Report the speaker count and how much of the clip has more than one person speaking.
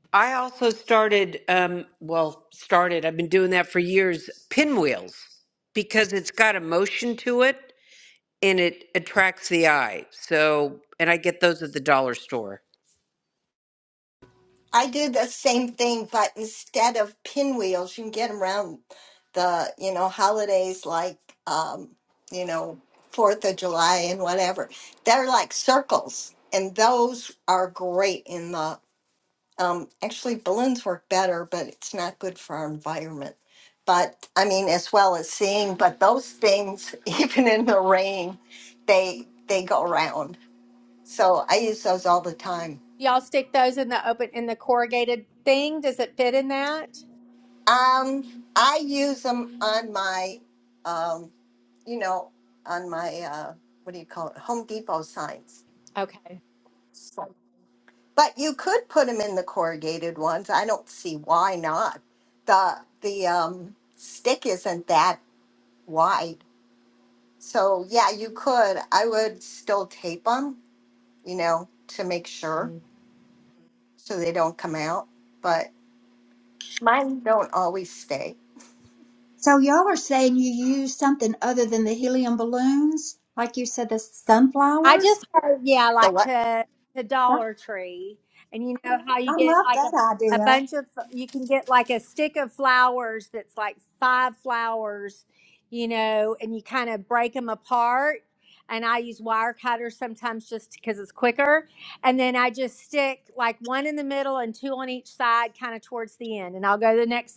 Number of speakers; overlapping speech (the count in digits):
4, about 2%